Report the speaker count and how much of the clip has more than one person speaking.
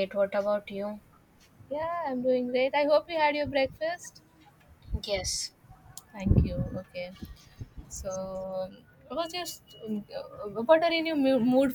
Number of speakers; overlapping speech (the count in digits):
2, no overlap